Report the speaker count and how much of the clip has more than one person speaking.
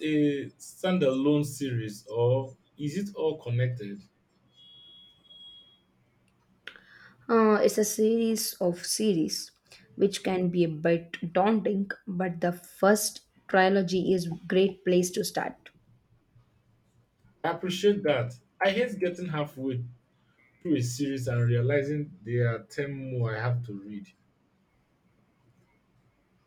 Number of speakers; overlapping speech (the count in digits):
2, no overlap